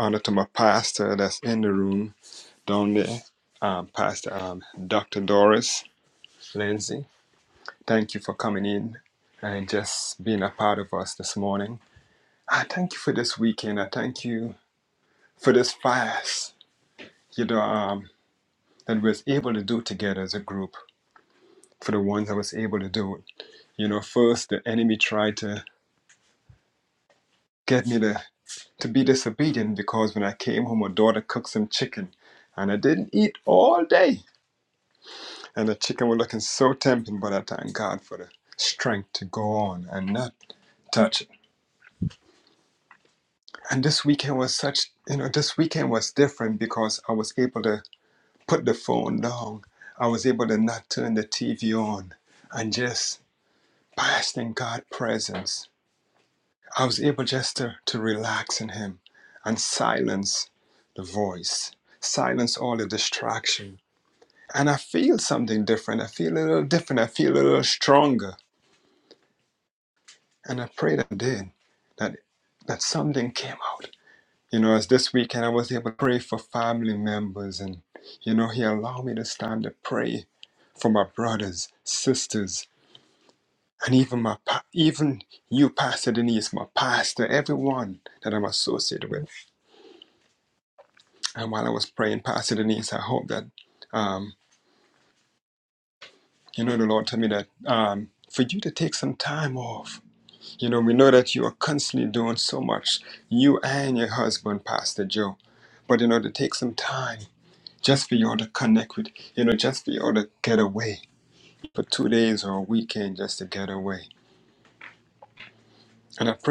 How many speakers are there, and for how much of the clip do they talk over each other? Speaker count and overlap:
one, no overlap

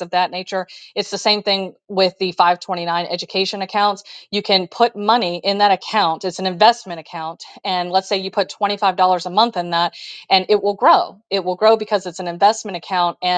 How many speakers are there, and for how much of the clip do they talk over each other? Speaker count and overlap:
one, no overlap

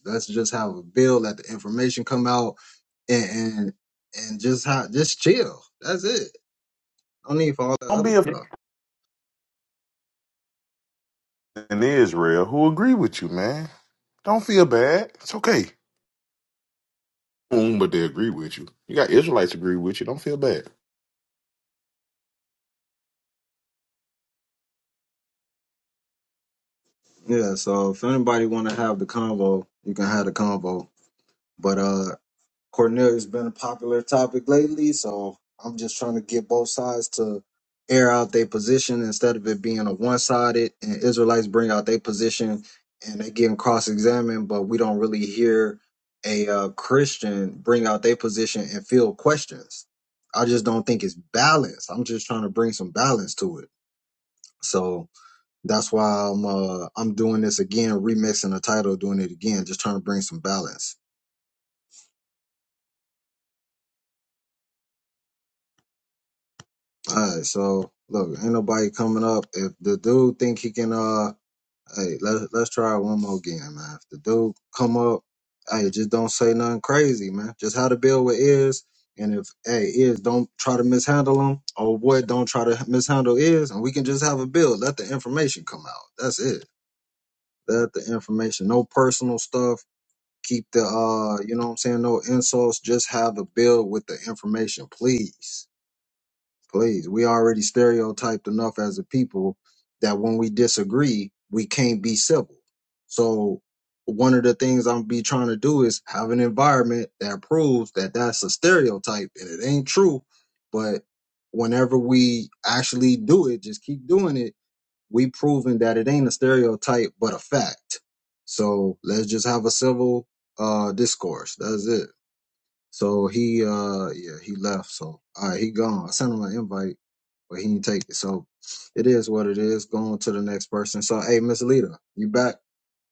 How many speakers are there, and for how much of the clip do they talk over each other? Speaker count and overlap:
two, under 1%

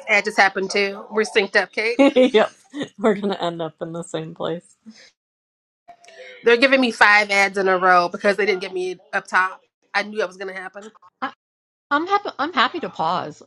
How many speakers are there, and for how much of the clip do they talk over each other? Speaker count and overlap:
three, under 1%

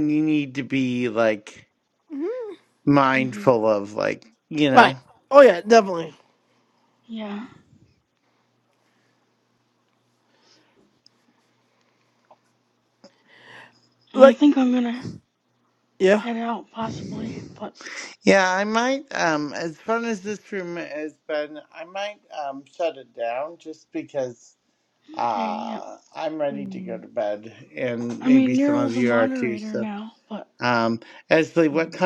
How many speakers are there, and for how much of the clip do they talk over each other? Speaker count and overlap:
three, about 10%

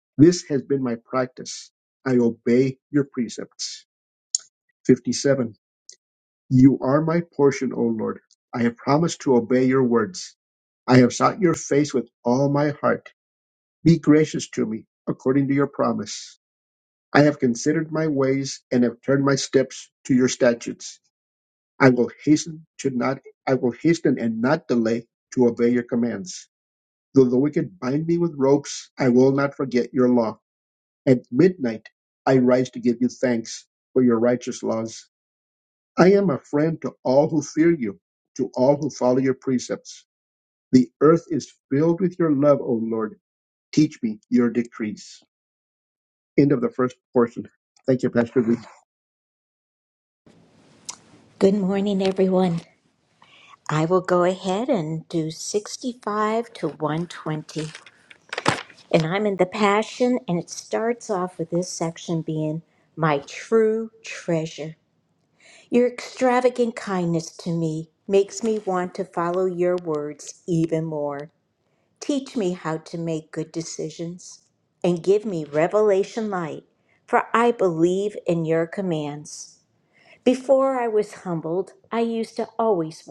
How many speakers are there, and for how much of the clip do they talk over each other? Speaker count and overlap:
two, no overlap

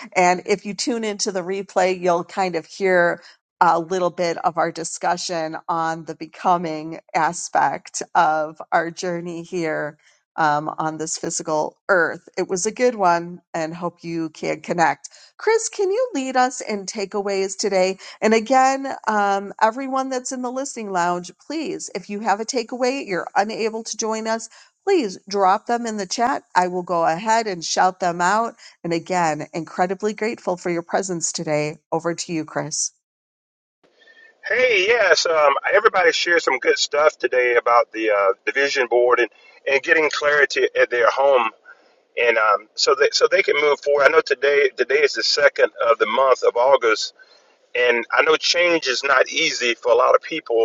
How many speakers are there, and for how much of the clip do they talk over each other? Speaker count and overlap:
two, no overlap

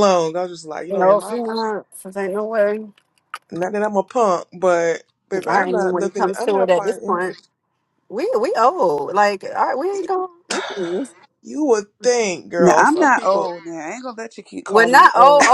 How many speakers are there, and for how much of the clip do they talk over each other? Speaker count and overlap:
three, about 26%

